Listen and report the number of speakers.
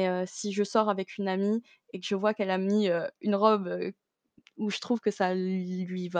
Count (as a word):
one